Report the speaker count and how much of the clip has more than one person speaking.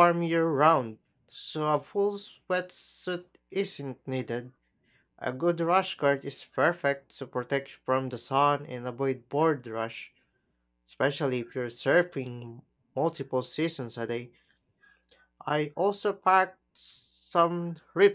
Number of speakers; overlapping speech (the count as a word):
one, no overlap